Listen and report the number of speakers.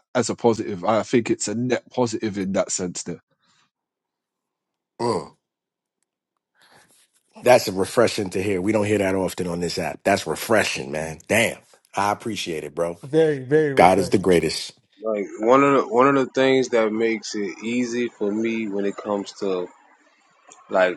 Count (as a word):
four